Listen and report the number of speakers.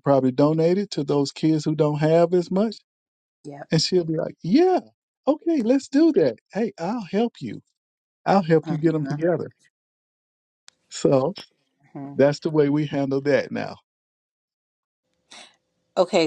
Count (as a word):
two